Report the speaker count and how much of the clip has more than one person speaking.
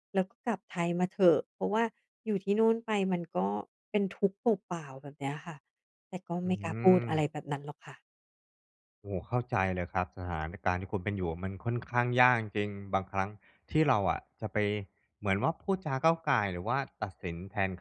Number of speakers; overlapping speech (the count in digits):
2, under 1%